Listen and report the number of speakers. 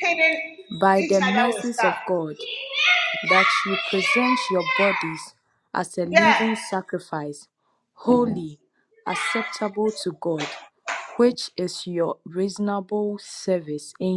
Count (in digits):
2